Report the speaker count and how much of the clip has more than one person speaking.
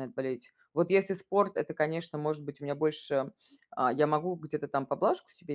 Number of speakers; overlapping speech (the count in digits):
1, no overlap